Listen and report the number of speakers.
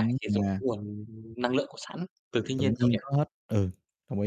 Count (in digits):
2